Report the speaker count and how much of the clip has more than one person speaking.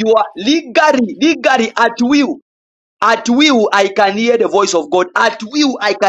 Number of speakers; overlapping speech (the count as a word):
one, no overlap